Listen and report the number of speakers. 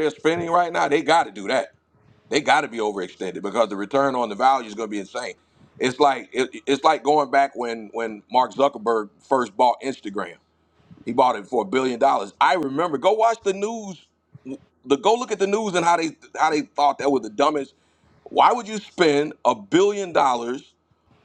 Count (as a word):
one